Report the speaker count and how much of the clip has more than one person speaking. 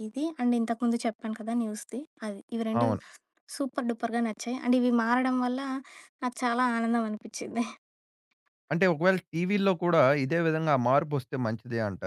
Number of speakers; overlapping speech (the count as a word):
two, about 2%